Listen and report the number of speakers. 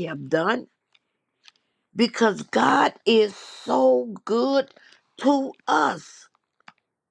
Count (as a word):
one